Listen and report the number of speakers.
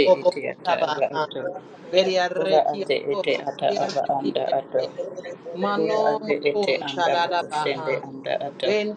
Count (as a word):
two